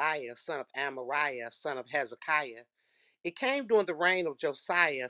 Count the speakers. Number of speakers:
1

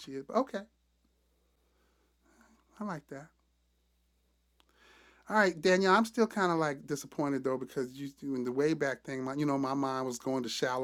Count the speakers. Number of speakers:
1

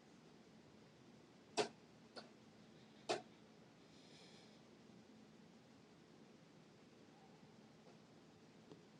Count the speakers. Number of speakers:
0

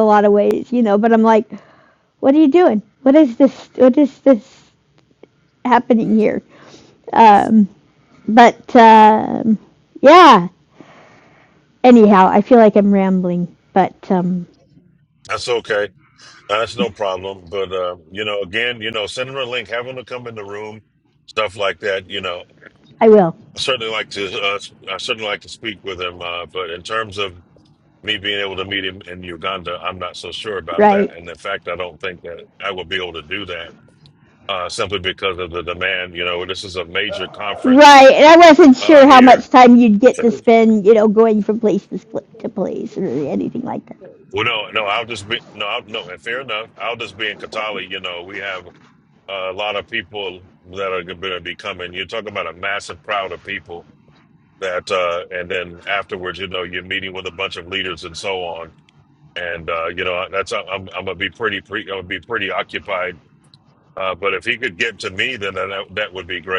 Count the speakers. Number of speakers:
2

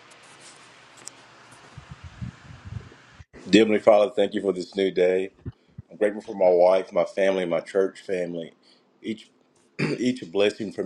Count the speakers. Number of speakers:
1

